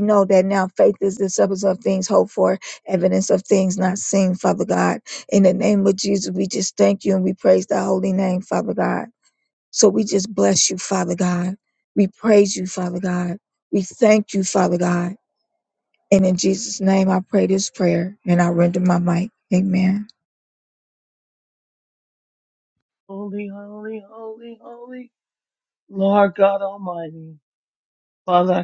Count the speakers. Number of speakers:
two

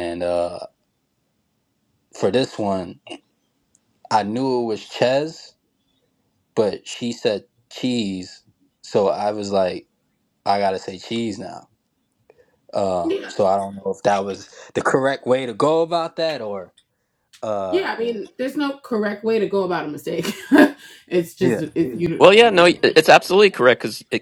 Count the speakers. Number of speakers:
three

